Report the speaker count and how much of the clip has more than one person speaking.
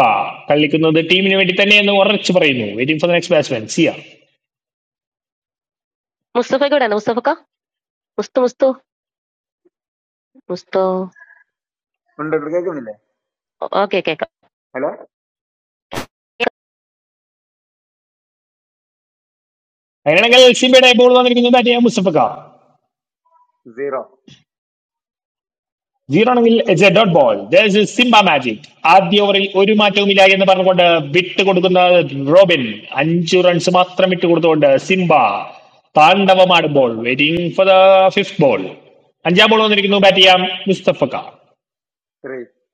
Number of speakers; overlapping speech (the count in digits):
3, no overlap